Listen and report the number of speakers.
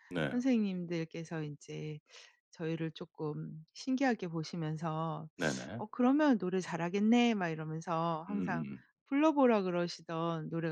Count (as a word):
two